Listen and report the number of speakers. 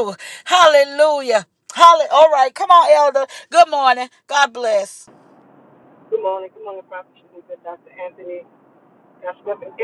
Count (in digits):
2